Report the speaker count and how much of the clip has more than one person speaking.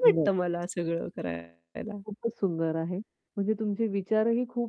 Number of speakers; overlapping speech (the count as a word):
two, no overlap